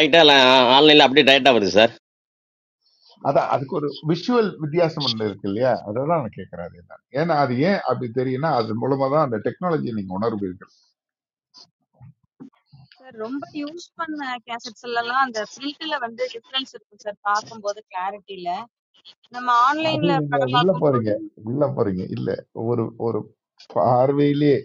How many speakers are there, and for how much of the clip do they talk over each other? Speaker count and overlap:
3, about 4%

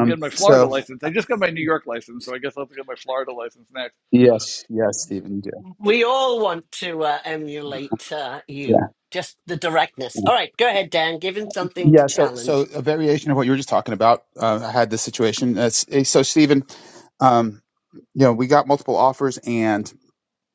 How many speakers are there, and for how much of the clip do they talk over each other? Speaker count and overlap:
3, about 9%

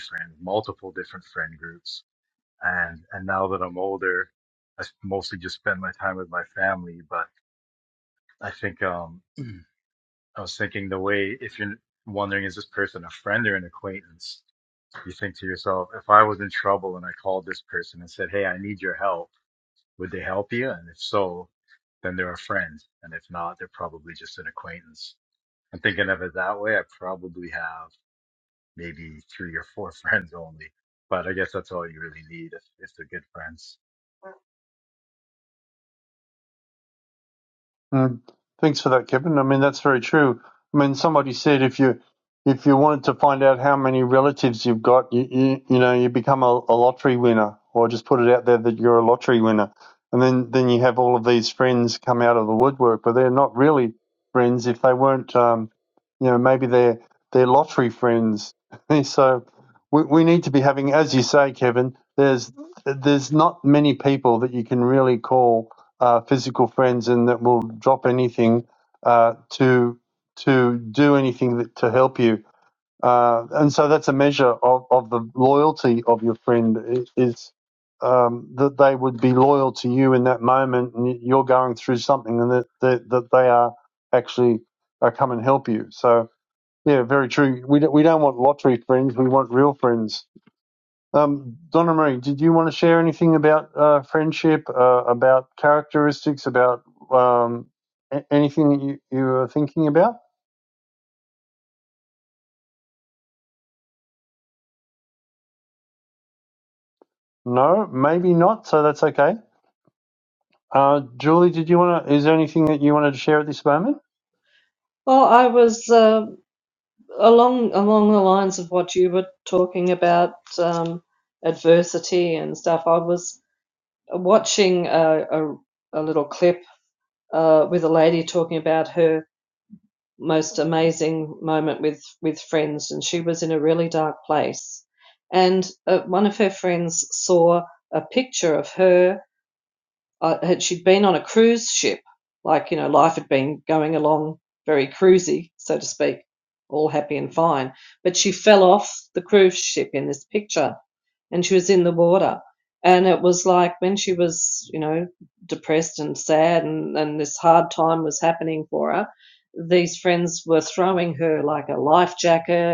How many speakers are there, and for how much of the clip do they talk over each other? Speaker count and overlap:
3, no overlap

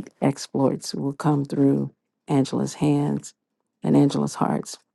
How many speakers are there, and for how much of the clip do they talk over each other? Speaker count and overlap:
1, no overlap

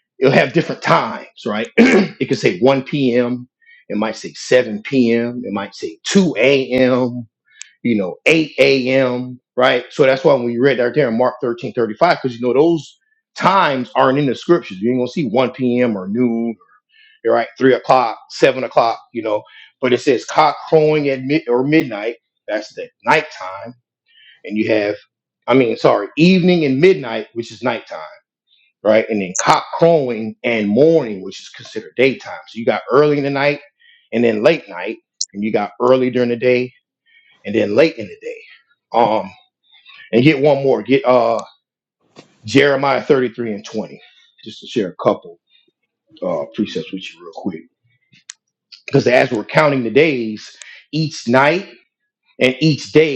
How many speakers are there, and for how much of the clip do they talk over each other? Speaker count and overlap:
1, no overlap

